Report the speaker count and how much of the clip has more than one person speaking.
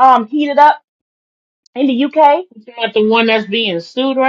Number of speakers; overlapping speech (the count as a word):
two, no overlap